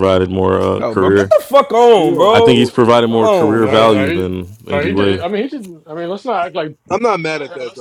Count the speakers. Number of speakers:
4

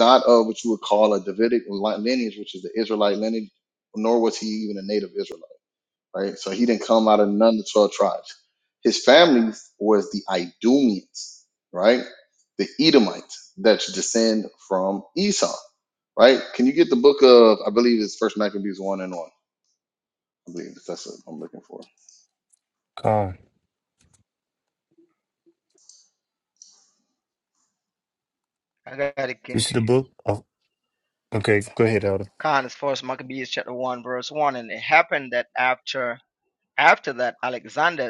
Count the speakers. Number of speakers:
3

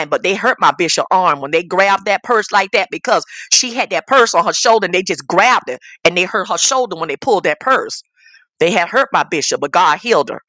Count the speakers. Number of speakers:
1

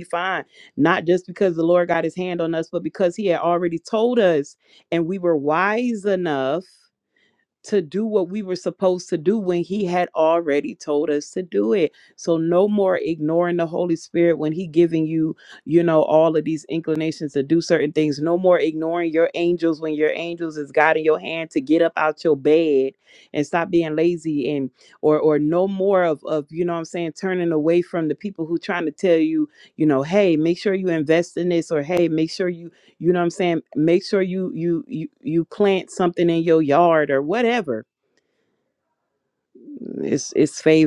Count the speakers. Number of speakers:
1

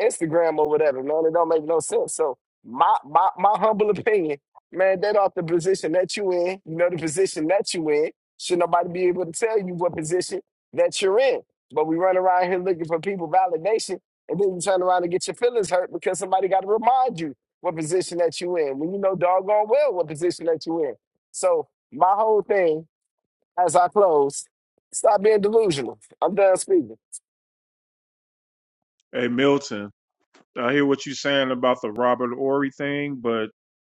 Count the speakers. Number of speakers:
2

